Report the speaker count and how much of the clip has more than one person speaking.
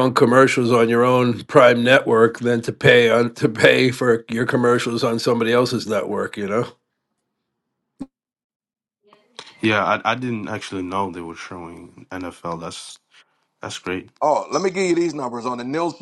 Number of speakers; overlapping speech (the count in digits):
3, no overlap